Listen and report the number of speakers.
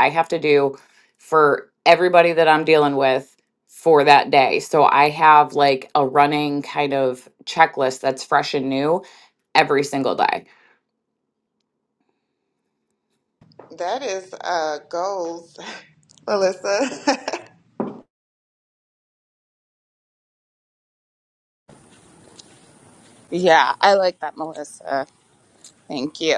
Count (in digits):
3